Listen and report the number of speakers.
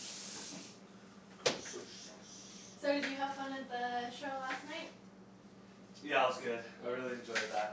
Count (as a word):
two